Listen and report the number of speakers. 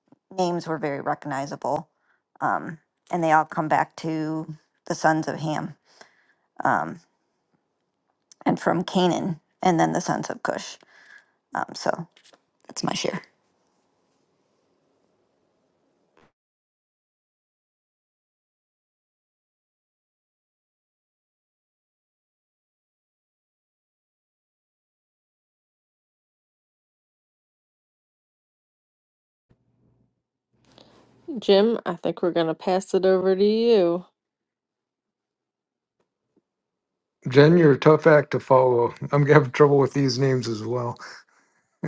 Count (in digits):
3